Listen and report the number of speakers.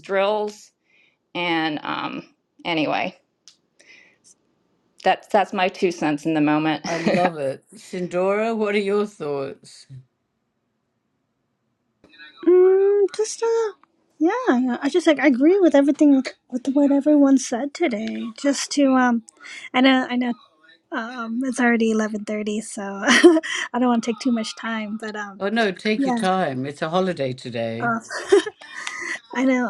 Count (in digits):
3